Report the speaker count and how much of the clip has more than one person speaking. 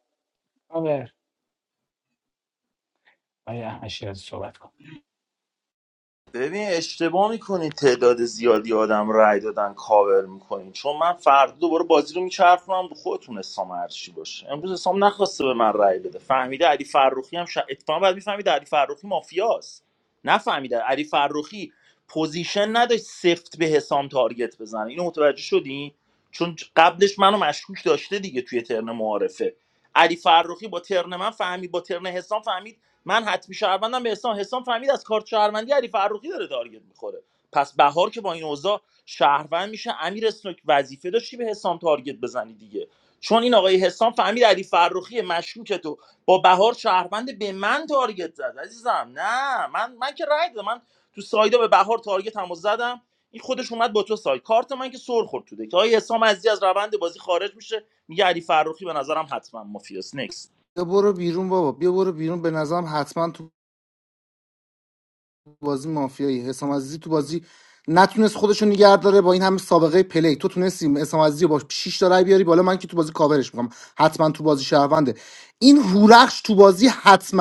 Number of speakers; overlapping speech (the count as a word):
three, no overlap